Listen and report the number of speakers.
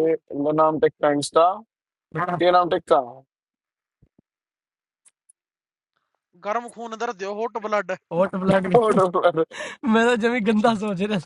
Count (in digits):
3